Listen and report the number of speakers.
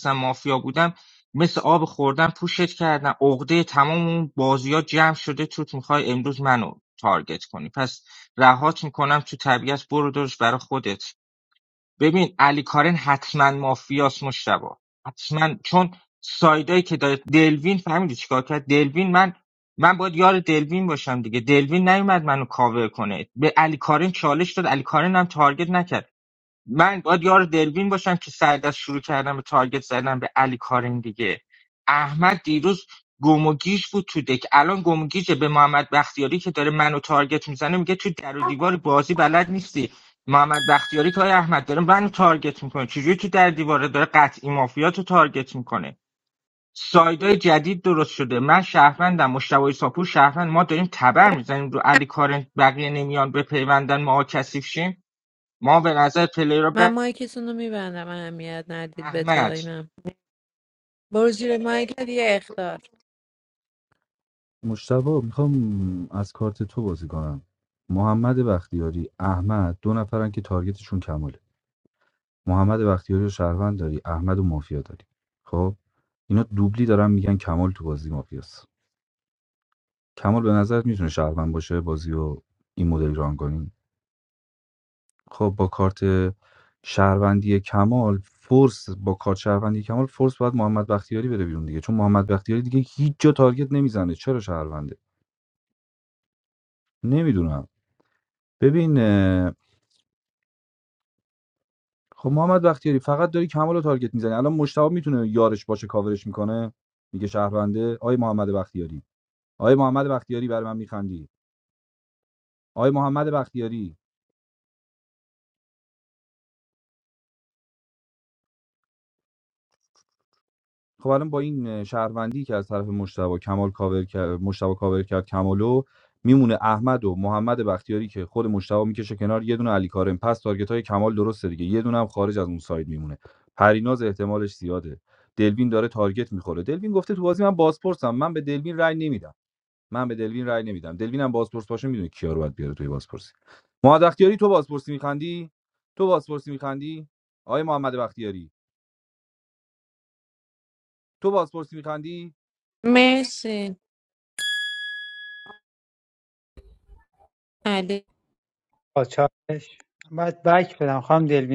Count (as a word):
four